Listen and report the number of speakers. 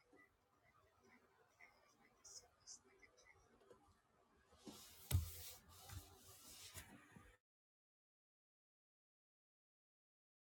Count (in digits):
0